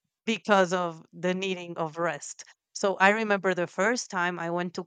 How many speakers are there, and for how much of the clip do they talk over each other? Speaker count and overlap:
one, no overlap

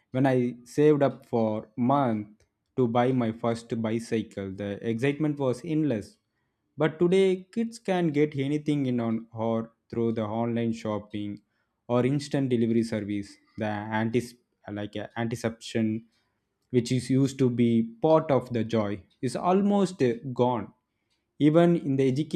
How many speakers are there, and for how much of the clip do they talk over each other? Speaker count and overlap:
one, no overlap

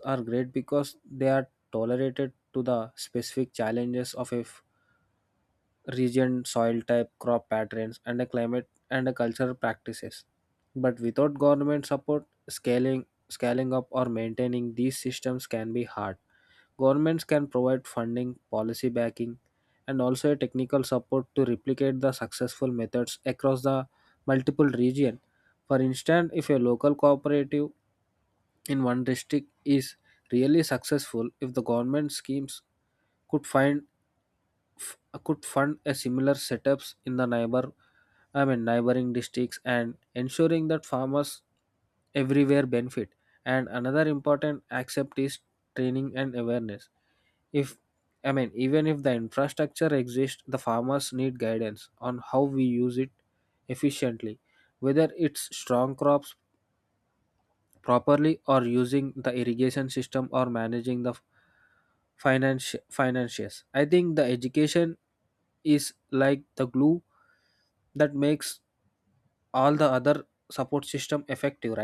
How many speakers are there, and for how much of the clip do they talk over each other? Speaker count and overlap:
one, no overlap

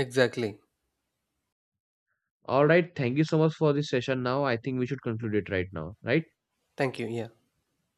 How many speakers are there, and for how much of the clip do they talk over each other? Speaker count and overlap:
two, no overlap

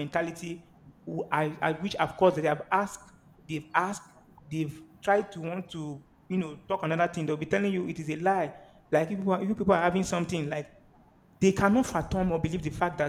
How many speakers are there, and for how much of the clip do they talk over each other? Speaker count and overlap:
one, no overlap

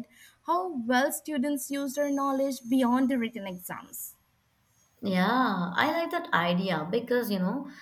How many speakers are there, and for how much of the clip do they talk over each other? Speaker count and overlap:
two, no overlap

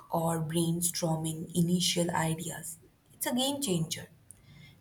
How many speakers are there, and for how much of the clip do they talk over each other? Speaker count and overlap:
one, no overlap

